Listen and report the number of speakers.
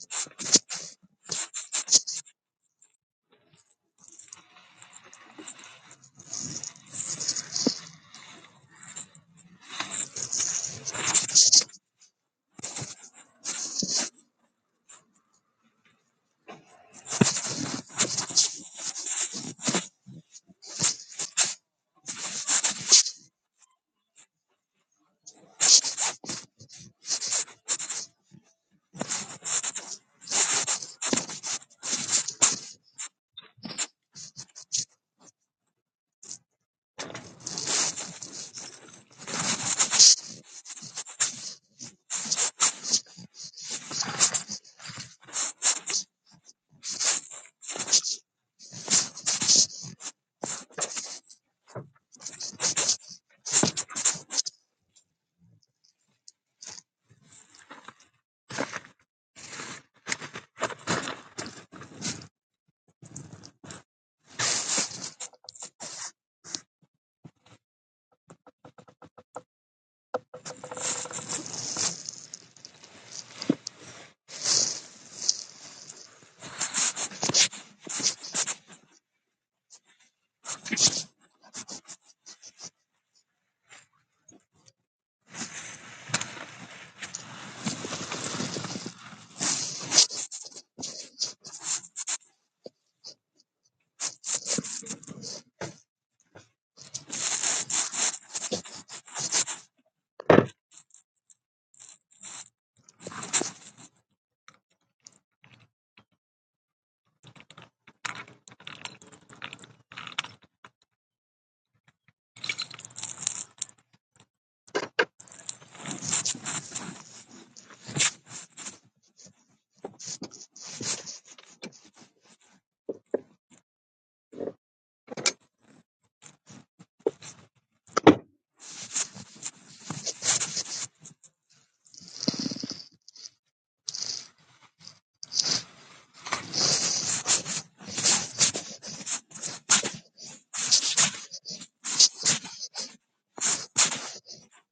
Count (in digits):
0